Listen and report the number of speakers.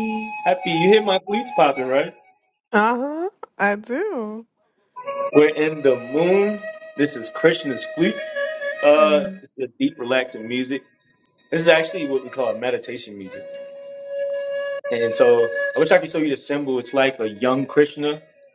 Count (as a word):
two